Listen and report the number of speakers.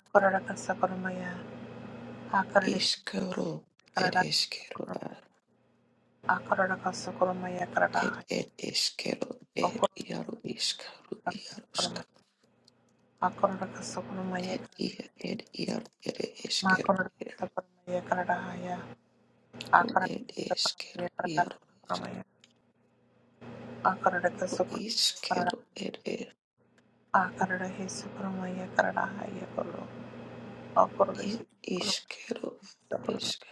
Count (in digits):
2